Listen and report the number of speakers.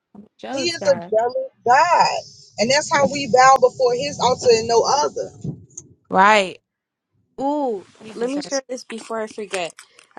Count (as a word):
three